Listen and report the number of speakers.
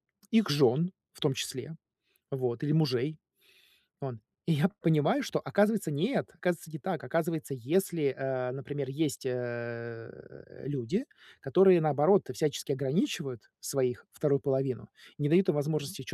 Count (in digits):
1